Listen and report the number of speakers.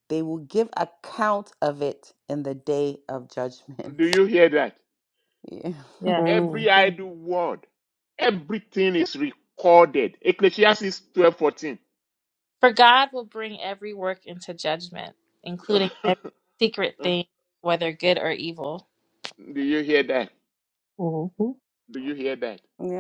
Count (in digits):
4